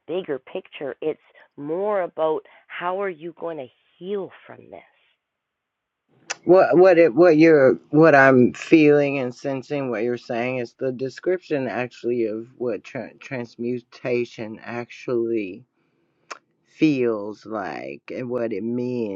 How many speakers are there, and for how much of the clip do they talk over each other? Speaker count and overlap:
2, no overlap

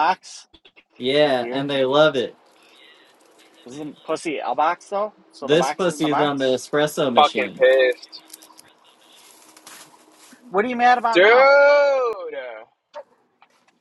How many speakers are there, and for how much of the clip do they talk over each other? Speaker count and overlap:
3, about 14%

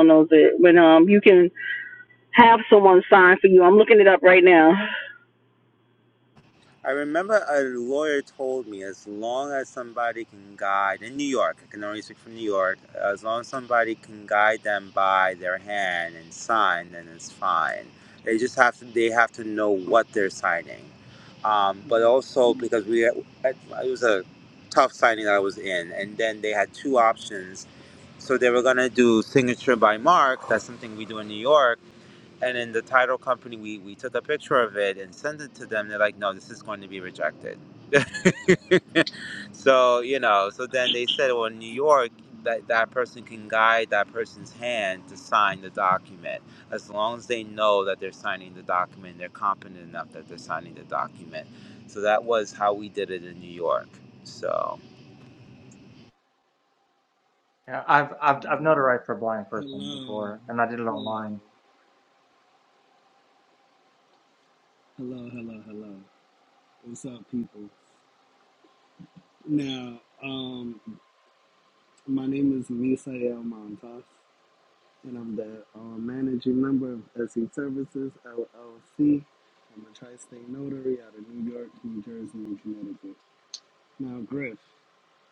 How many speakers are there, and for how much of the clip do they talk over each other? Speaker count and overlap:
4, about 2%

